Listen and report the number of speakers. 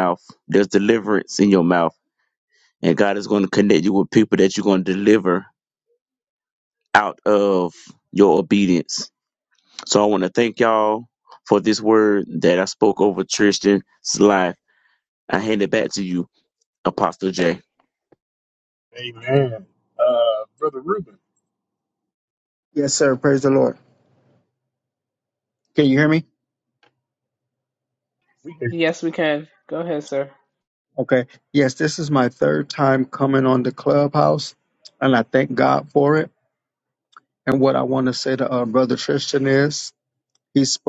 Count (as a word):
four